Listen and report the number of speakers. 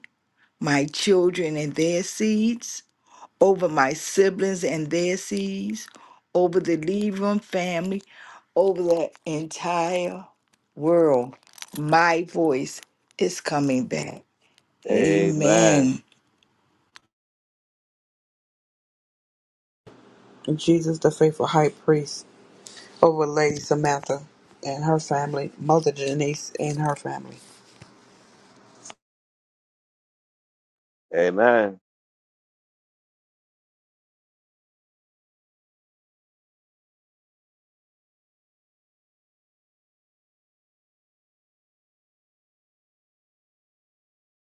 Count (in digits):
3